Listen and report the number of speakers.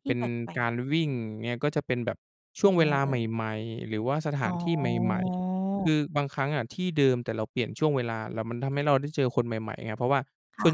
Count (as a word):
two